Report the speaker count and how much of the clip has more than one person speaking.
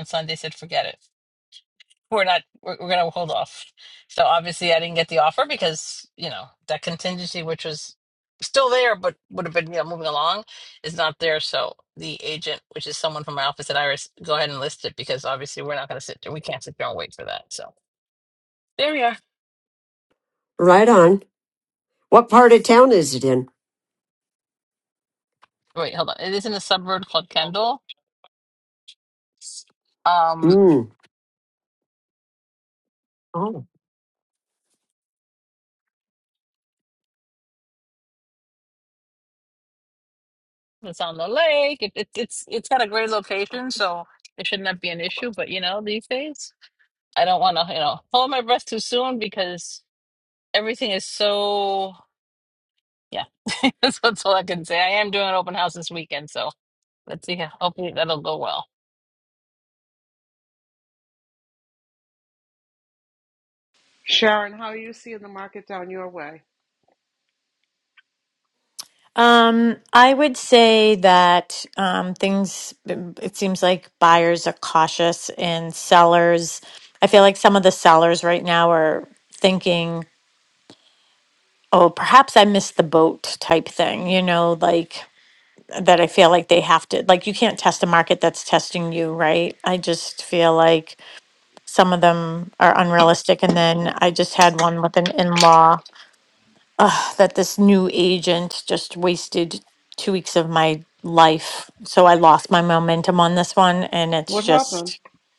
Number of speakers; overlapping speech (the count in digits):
4, about 1%